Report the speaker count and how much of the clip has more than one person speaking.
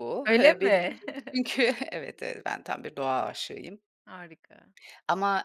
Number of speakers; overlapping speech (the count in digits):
2, about 14%